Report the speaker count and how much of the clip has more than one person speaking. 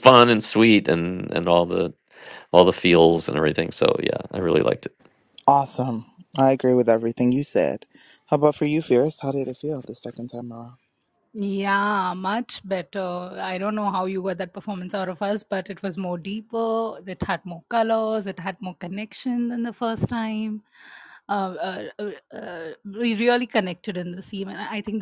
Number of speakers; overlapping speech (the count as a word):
three, no overlap